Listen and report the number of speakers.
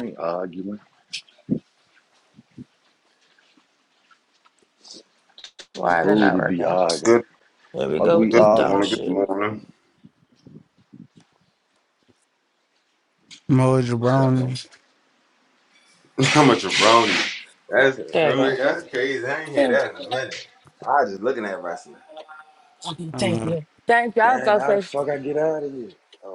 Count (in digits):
4